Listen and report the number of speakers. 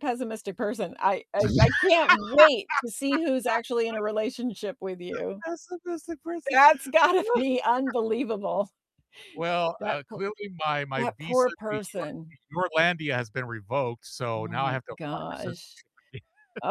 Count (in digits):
2